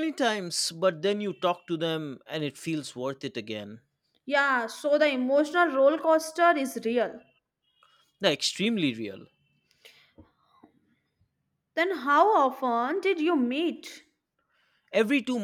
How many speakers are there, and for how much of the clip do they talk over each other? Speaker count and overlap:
two, no overlap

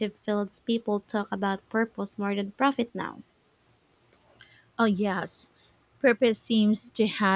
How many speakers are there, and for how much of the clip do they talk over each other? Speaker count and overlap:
two, no overlap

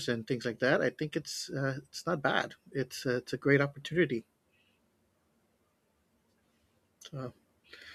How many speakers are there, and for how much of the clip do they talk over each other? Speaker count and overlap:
one, no overlap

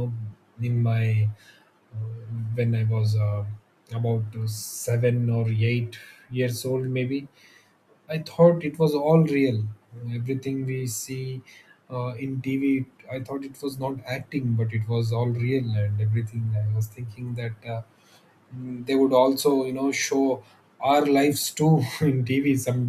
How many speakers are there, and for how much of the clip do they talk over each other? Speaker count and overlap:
one, no overlap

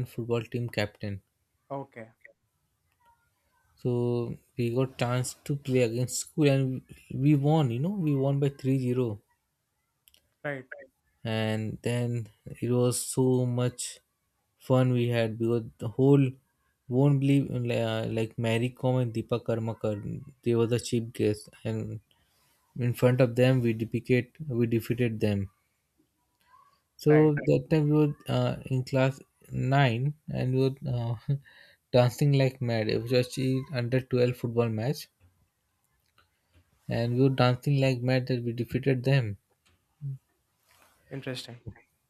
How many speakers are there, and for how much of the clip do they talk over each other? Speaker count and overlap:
two, about 1%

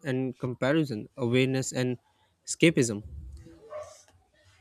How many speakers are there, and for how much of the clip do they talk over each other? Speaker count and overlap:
one, no overlap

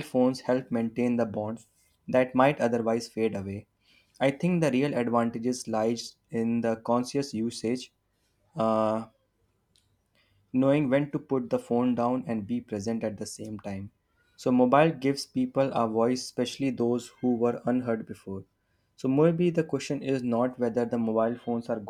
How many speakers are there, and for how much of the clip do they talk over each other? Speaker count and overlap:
one, no overlap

